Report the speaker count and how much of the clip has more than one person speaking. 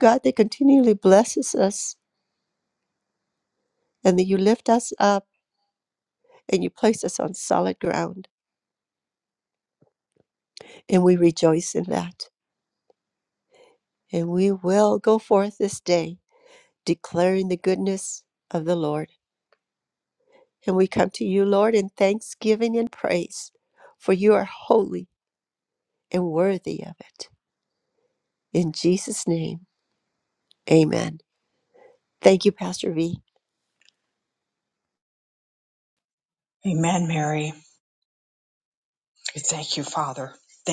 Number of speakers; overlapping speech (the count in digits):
2, no overlap